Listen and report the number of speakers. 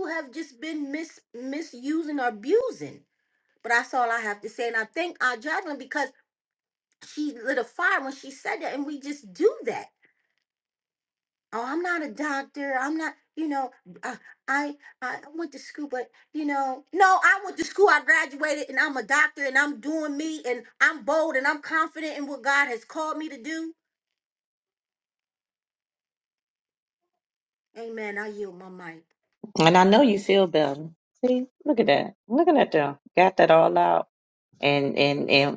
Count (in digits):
2